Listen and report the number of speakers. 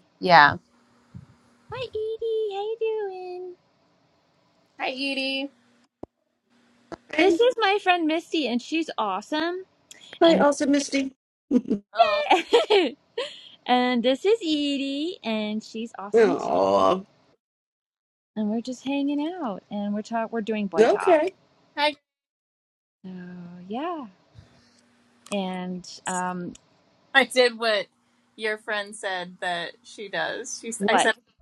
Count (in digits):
3